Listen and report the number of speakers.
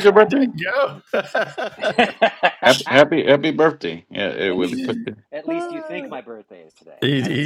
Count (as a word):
three